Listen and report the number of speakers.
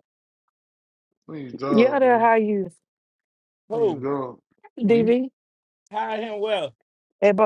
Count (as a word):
three